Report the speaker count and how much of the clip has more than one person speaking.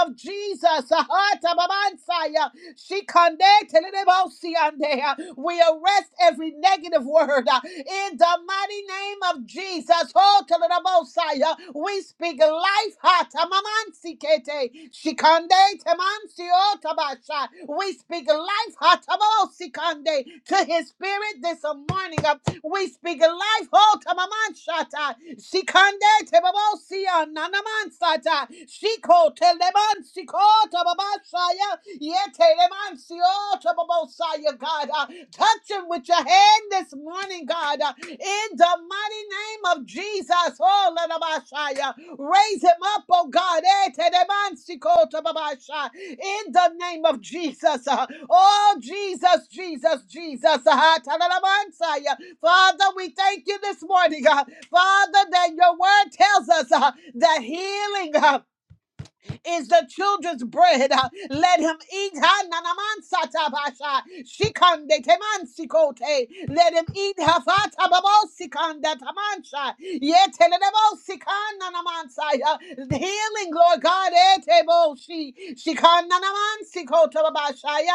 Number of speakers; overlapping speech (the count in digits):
1, no overlap